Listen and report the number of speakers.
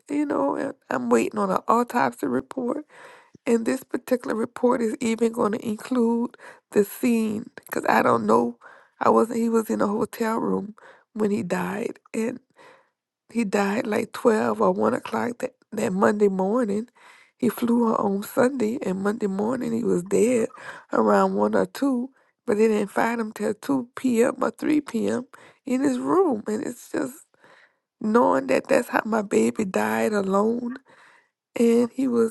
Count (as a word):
one